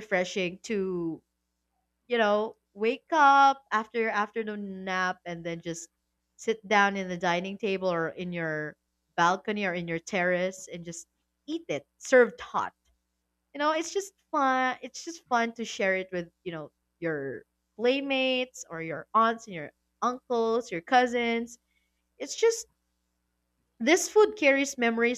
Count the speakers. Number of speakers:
1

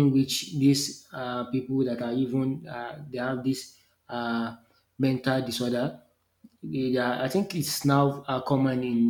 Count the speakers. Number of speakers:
1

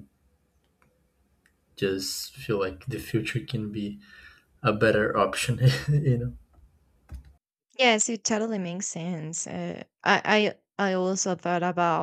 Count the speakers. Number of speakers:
2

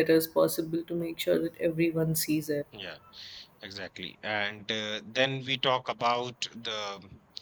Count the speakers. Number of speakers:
2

